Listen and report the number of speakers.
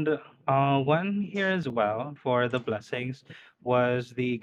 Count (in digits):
1